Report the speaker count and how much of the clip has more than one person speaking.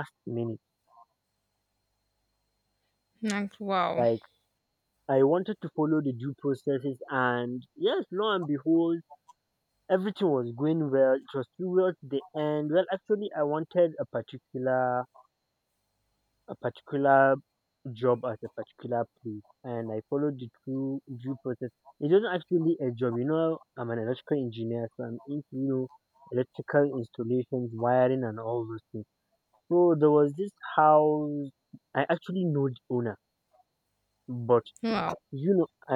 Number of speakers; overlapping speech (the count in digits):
2, under 1%